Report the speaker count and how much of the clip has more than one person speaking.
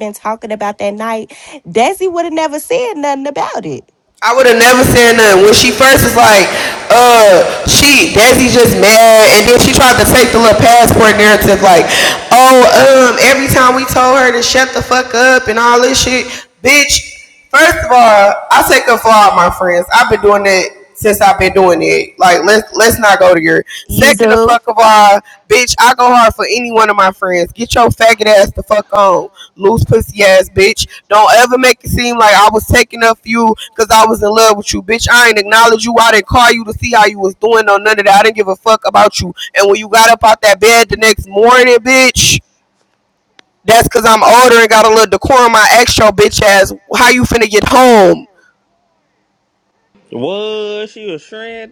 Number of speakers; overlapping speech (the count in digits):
3, about 1%